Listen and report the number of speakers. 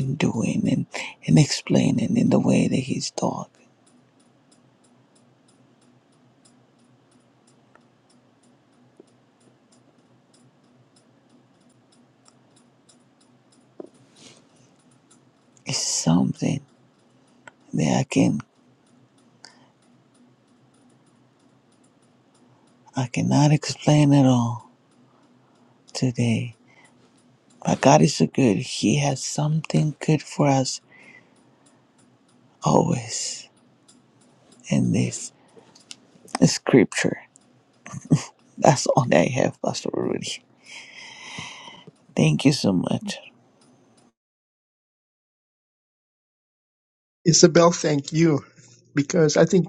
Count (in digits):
2